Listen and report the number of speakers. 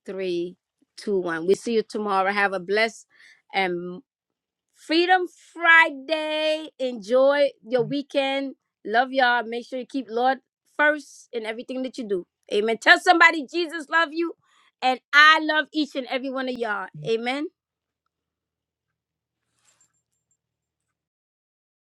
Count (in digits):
1